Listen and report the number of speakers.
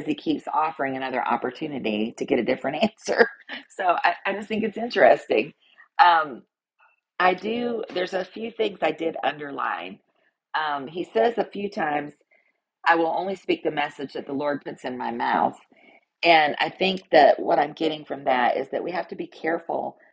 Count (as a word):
one